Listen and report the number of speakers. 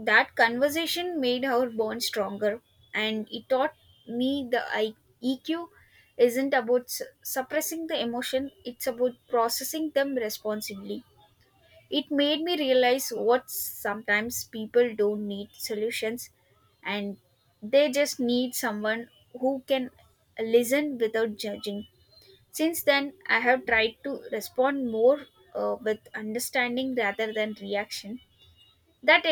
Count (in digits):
1